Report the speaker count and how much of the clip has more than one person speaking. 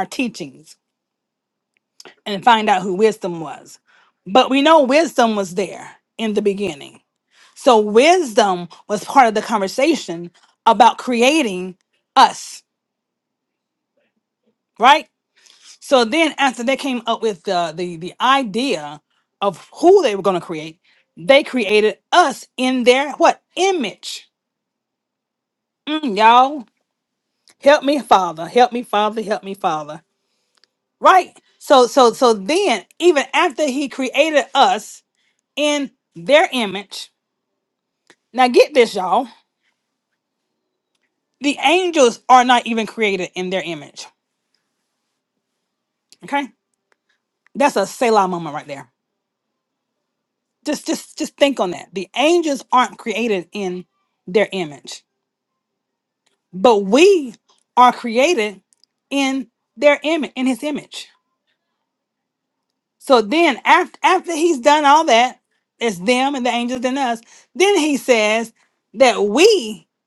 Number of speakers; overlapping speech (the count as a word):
one, no overlap